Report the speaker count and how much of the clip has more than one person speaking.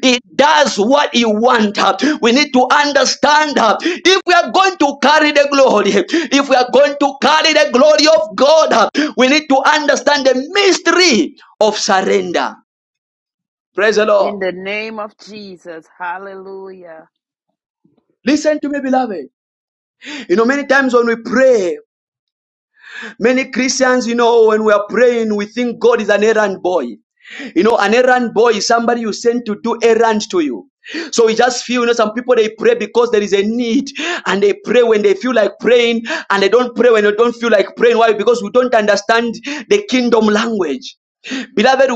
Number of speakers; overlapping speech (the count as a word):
two, under 1%